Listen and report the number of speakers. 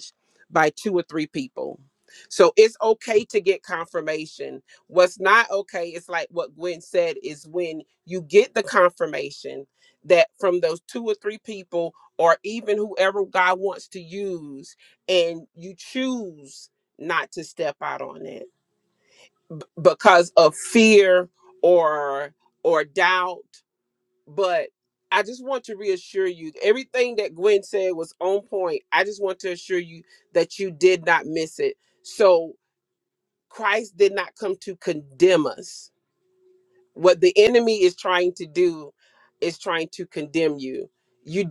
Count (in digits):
1